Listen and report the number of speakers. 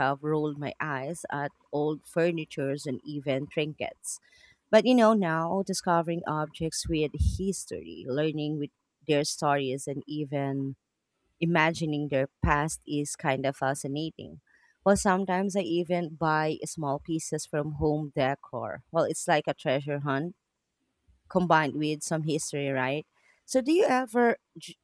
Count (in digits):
1